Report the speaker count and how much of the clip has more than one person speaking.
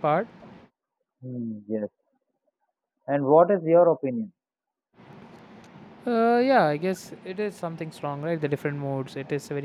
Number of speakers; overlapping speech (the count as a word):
two, no overlap